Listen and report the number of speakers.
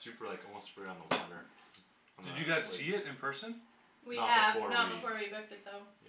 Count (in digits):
3